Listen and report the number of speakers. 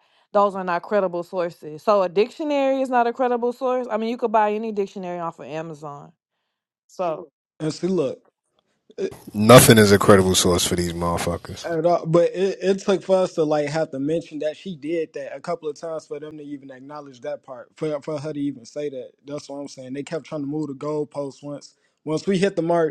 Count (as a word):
three